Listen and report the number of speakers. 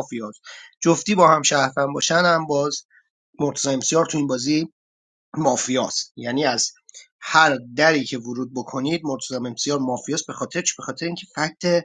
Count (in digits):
1